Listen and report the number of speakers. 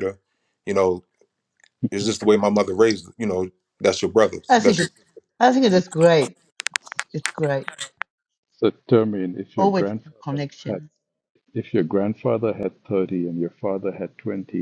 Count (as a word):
three